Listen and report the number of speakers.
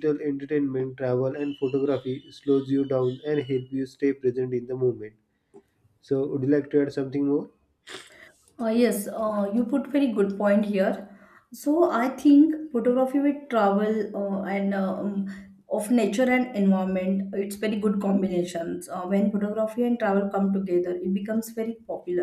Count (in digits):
2